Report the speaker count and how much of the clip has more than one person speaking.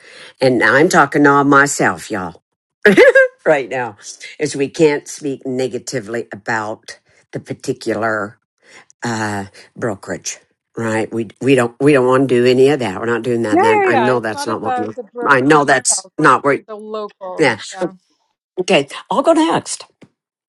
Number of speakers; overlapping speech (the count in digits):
2, about 12%